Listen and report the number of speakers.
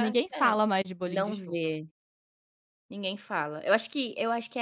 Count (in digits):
2